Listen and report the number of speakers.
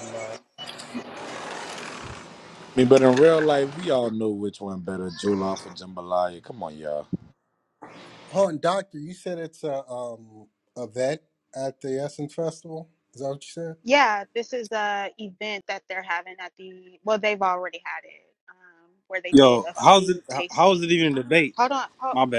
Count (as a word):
four